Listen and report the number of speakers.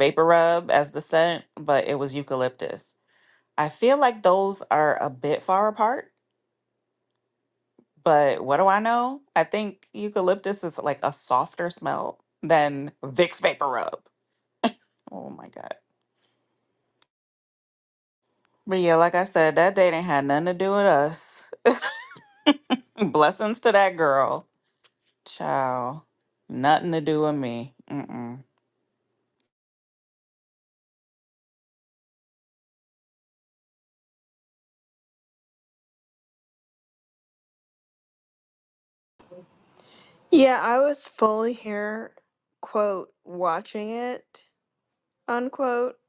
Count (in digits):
2